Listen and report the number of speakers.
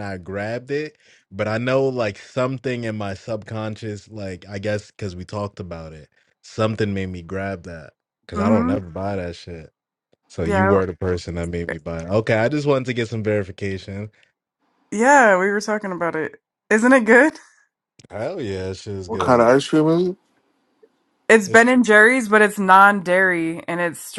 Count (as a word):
three